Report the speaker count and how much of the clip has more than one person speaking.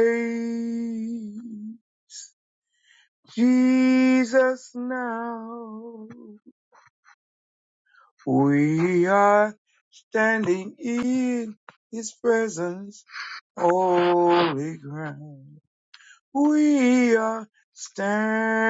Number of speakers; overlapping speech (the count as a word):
one, no overlap